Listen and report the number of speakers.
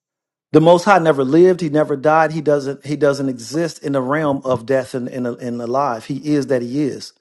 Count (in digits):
1